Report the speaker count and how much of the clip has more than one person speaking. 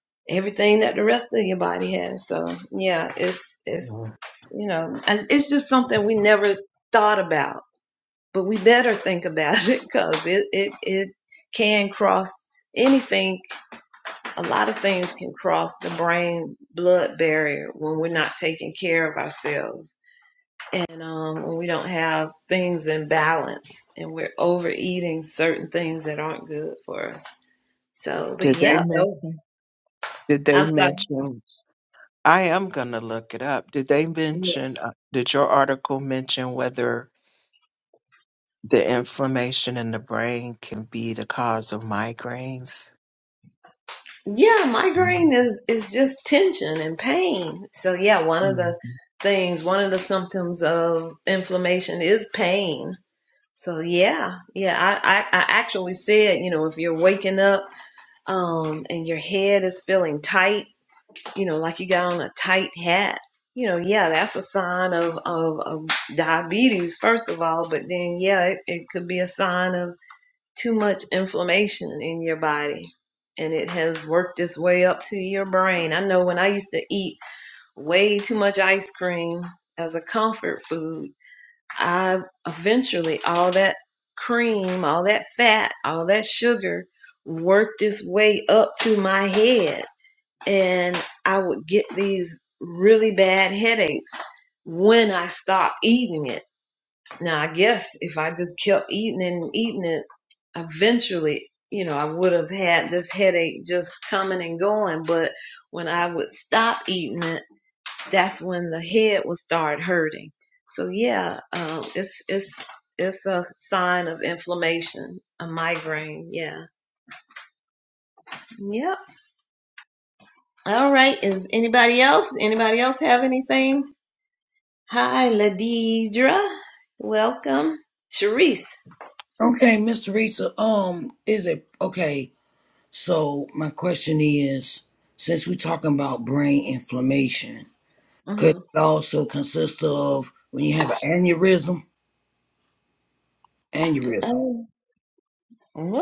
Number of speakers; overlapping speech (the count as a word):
three, about 1%